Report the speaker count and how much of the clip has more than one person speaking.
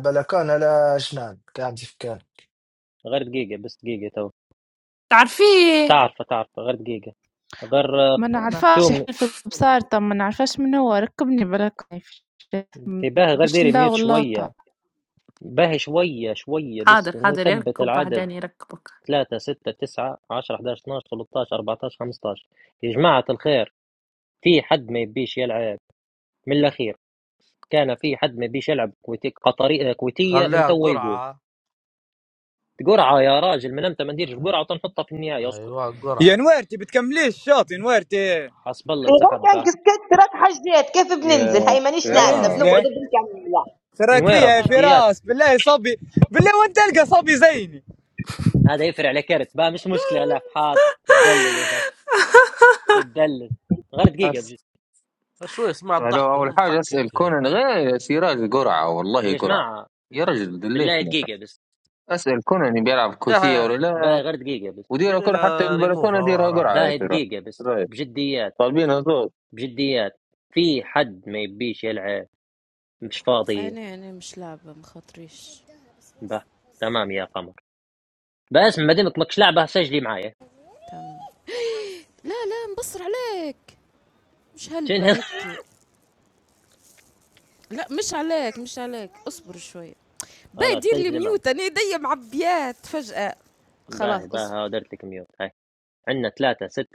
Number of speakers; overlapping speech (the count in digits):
9, about 14%